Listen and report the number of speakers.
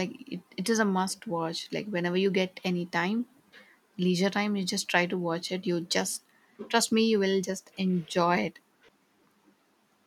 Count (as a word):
one